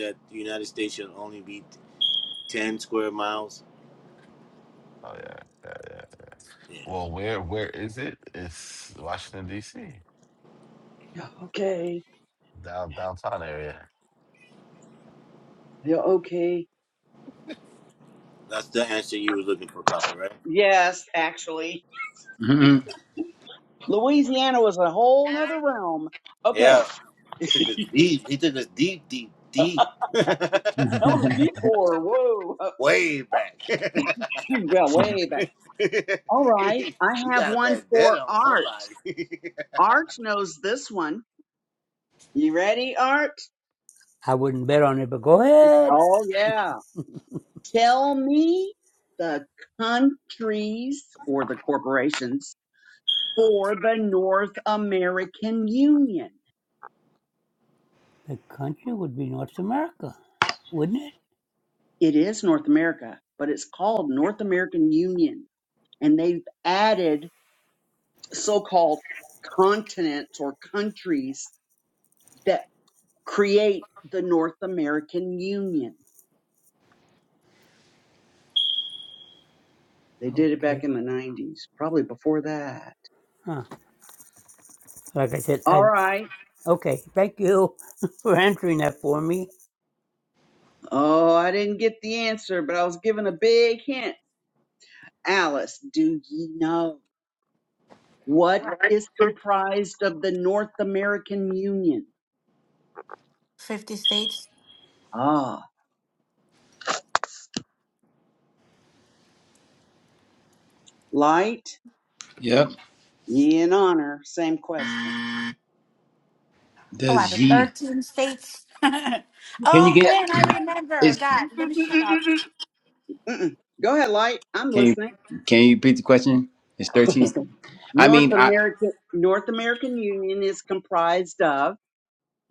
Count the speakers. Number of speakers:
six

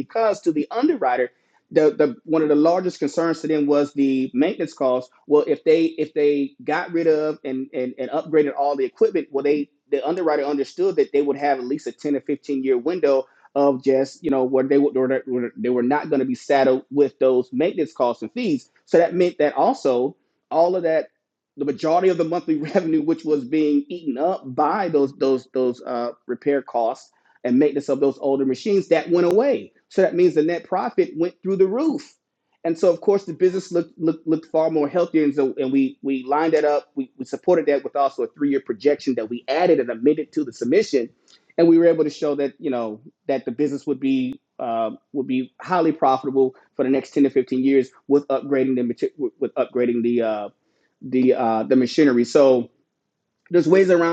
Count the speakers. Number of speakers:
one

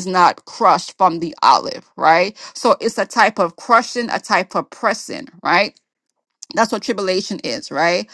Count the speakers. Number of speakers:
one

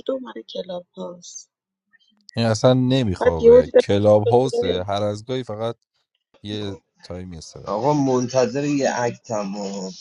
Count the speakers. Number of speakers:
three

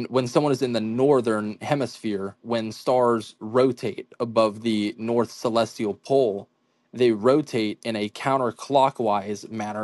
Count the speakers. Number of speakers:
one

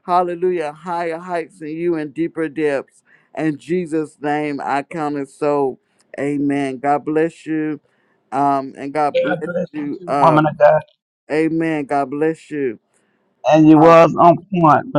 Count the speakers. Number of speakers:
two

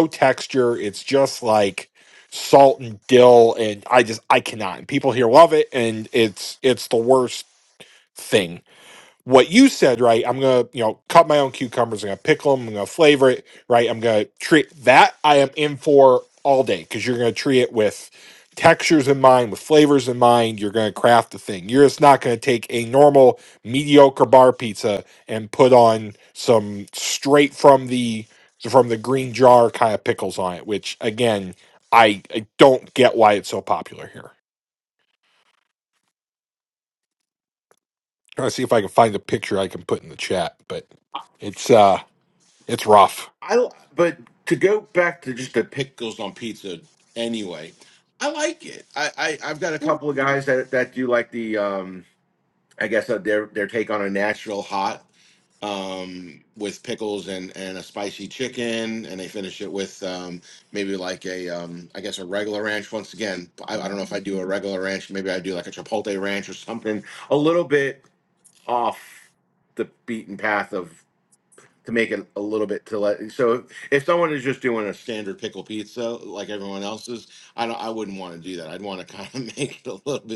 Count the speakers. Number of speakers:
two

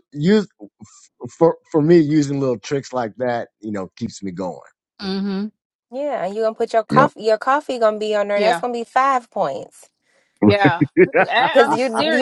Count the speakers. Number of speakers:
three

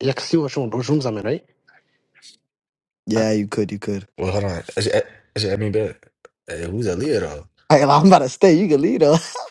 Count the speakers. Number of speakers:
three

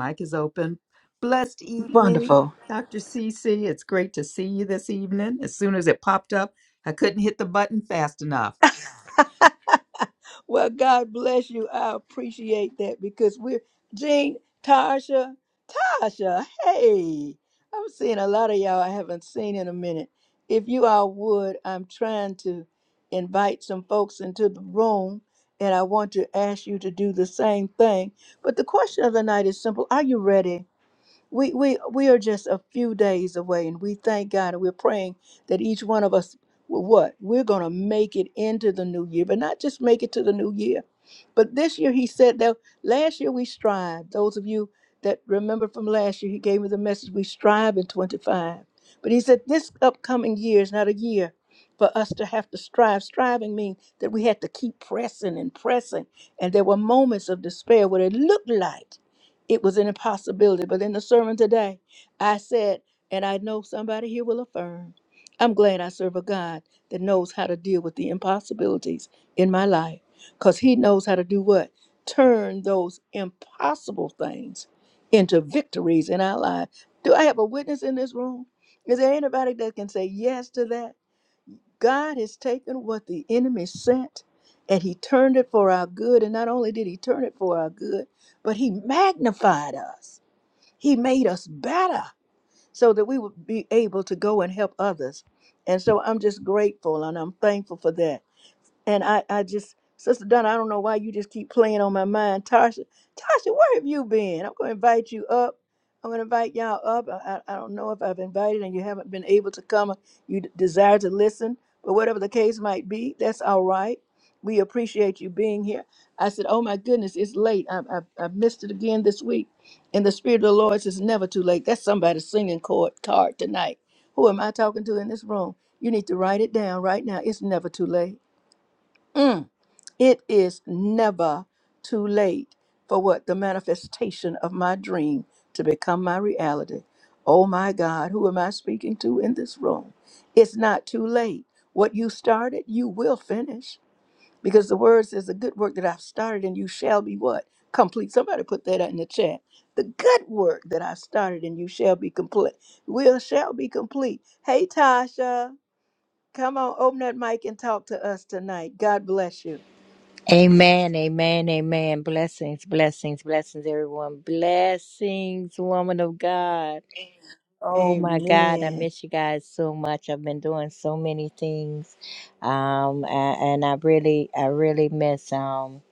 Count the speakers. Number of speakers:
three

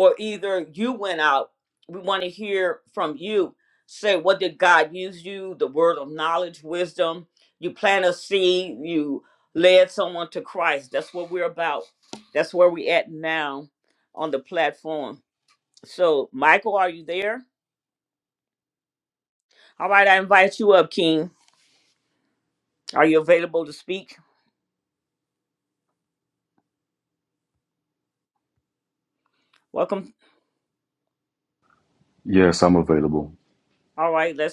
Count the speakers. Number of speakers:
two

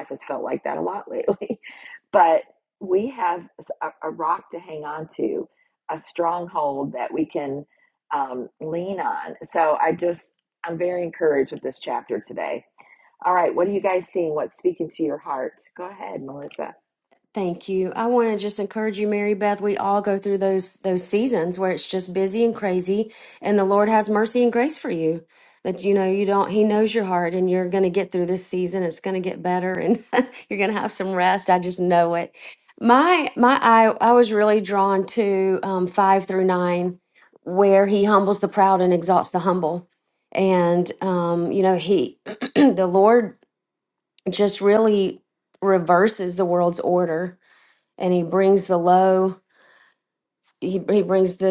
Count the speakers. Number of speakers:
two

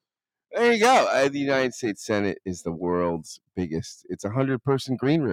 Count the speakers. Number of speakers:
one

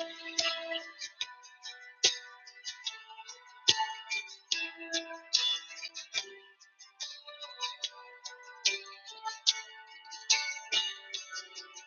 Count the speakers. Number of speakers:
zero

